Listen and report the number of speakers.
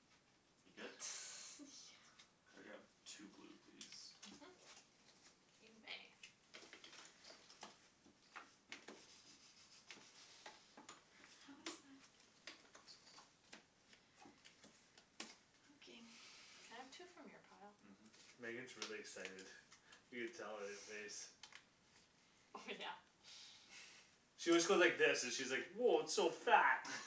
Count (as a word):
four